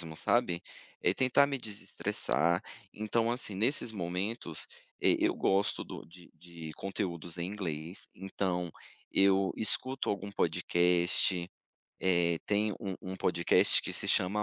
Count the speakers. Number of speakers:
1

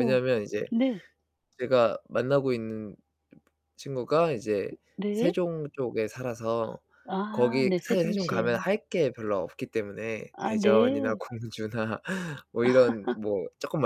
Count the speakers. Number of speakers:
2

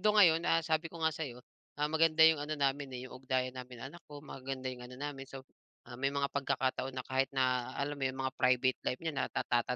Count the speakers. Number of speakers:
1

